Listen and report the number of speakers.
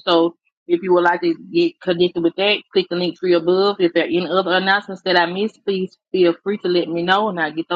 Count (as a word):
one